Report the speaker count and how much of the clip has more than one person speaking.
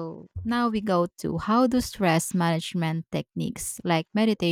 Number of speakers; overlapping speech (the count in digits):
1, no overlap